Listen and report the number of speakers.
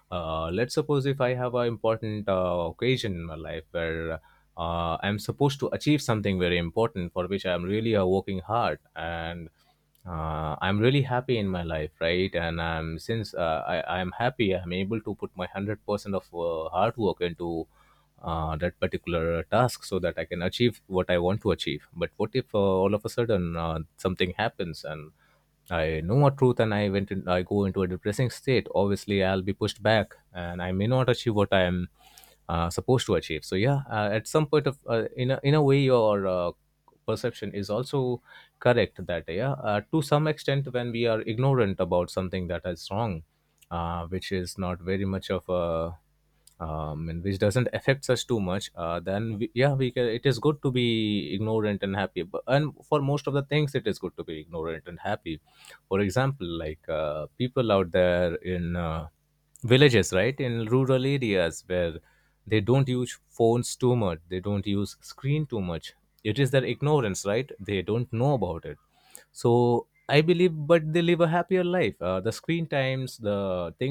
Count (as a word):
one